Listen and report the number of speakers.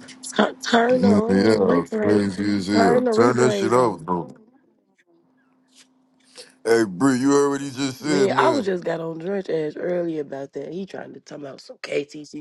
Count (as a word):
two